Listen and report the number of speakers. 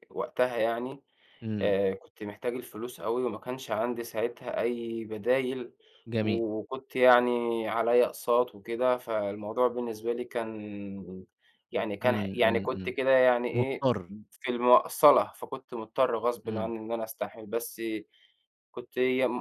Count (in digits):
2